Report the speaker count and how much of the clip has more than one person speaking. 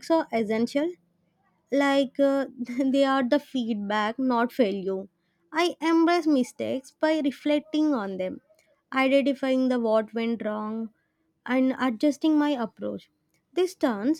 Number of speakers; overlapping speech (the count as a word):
one, no overlap